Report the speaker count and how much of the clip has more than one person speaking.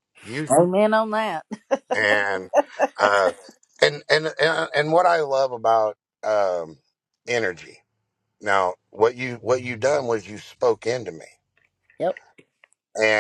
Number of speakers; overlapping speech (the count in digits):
2, under 1%